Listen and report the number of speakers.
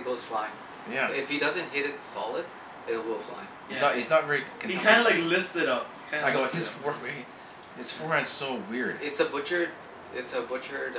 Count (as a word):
three